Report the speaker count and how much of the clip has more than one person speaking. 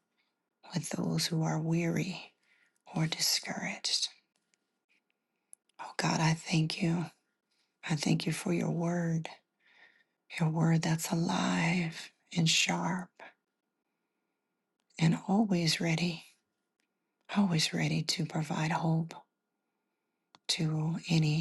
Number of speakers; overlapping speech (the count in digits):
1, no overlap